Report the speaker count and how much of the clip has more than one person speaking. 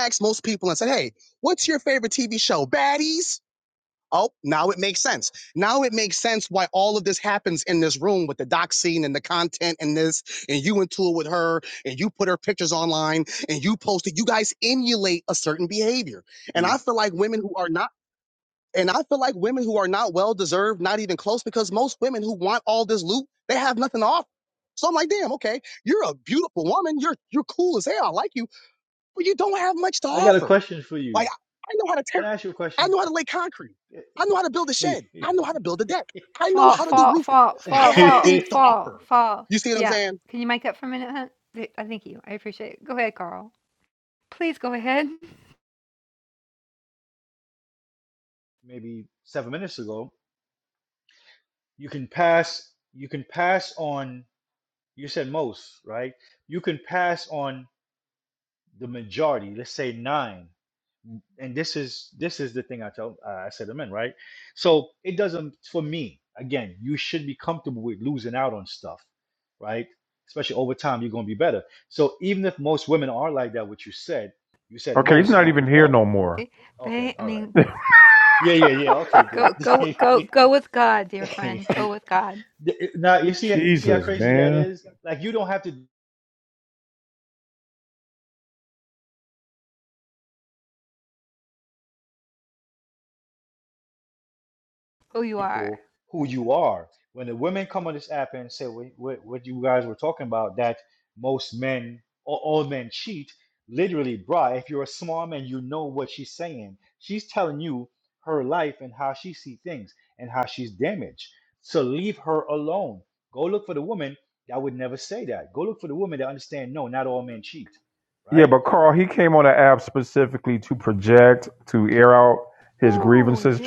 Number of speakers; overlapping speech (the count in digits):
4, about 6%